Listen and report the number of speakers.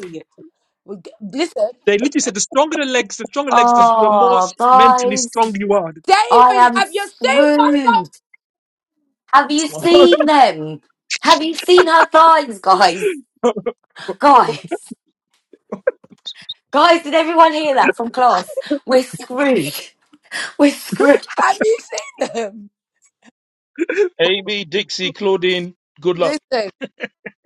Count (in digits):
4